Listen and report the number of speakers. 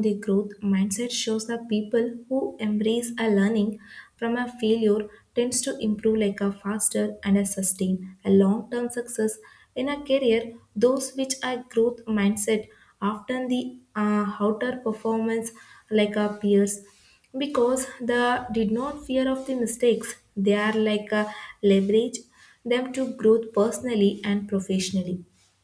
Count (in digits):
1